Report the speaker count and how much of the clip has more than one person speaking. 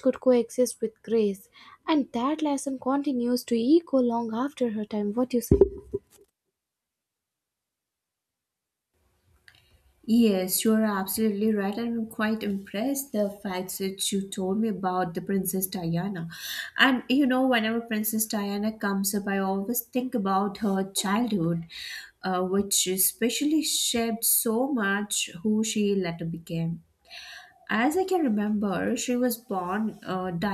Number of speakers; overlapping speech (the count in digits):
2, no overlap